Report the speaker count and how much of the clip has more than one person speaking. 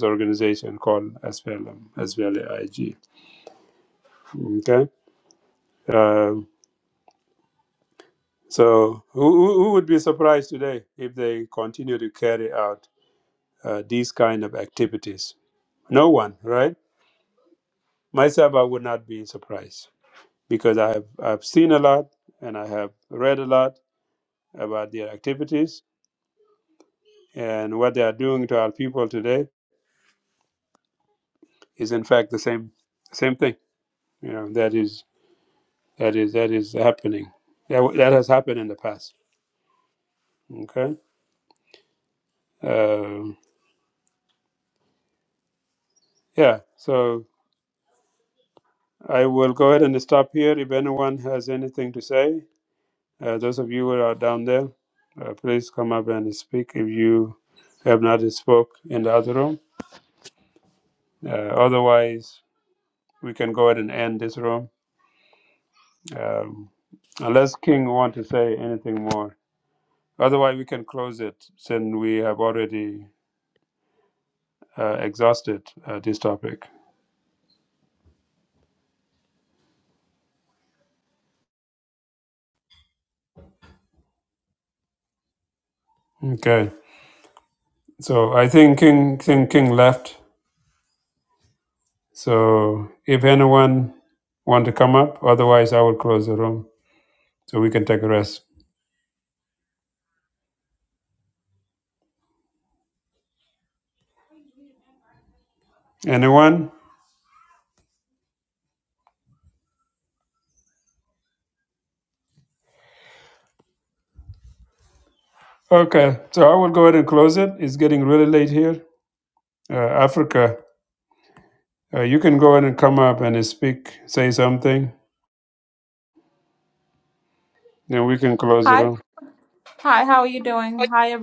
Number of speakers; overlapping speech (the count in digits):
2, under 1%